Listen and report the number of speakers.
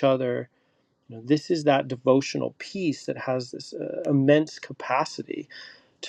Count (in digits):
1